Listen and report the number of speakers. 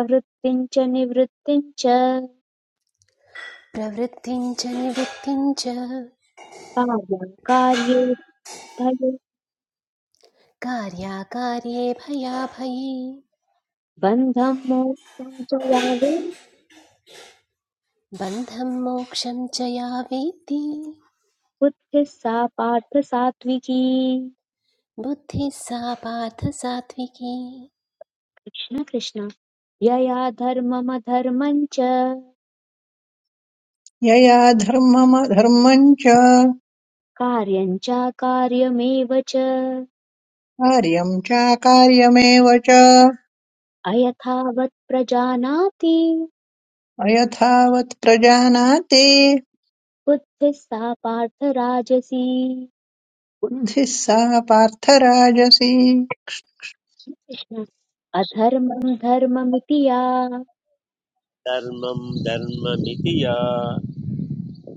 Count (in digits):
4